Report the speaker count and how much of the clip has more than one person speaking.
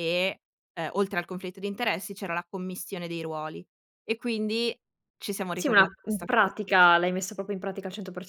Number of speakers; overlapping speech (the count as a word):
two, about 11%